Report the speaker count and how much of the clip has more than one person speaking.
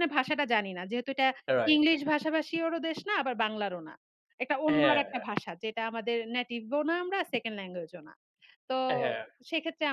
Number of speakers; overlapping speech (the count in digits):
2, about 8%